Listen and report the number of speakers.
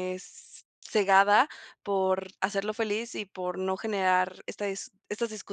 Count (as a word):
one